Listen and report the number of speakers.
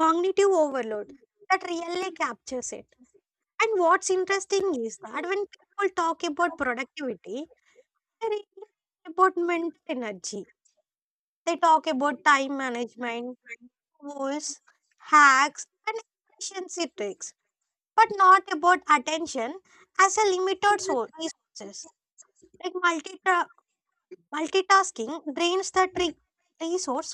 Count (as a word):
one